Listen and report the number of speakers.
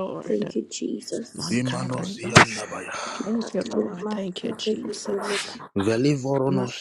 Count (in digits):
3